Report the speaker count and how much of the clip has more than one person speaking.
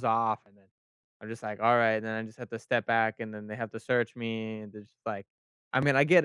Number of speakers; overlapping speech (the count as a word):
one, no overlap